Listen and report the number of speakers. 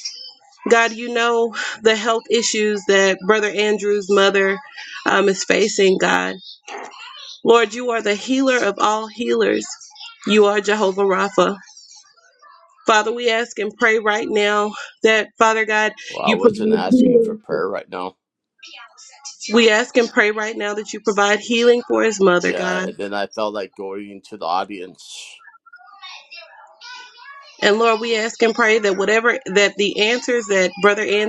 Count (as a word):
two